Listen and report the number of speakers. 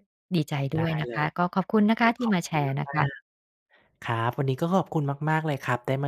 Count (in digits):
2